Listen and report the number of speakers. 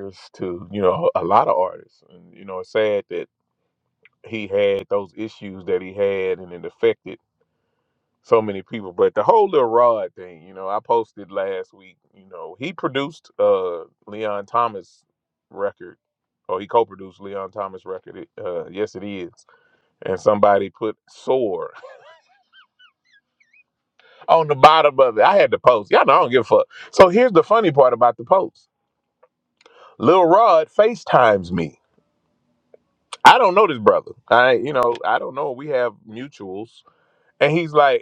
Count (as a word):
one